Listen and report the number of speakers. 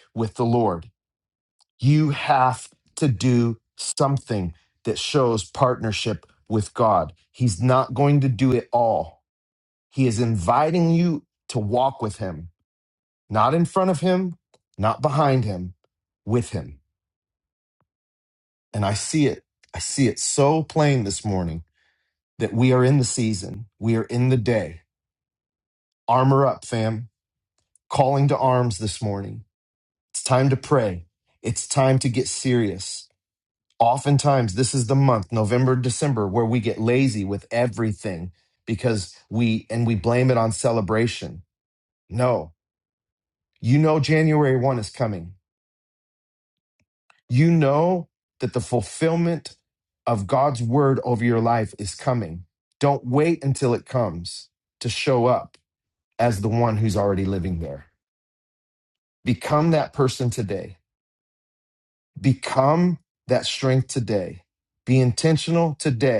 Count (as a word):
one